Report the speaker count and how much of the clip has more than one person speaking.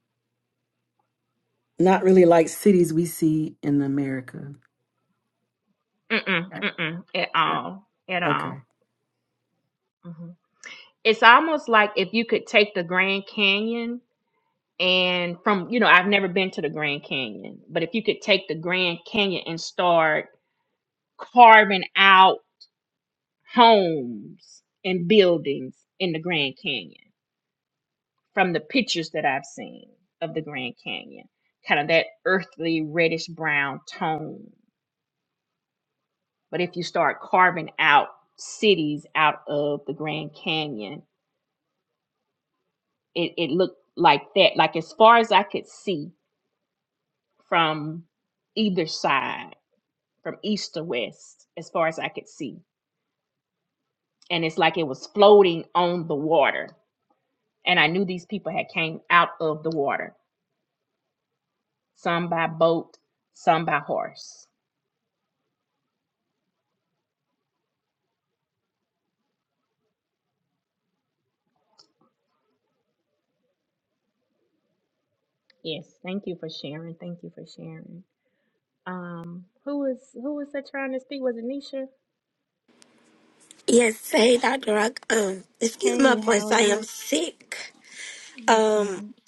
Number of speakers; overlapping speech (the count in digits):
3, about 2%